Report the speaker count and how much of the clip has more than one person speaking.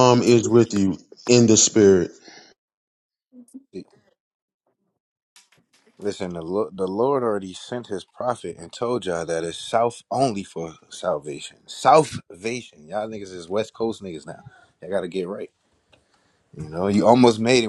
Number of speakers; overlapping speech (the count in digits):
2, no overlap